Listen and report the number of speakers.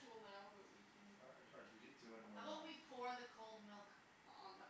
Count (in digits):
3